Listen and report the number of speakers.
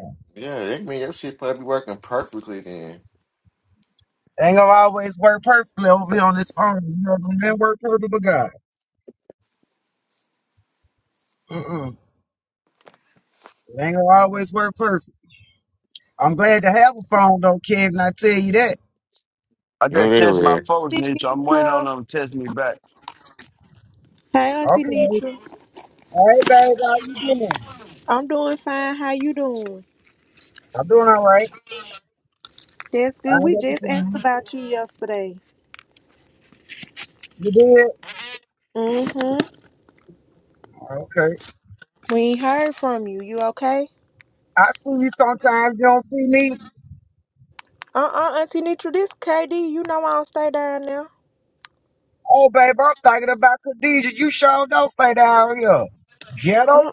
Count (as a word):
four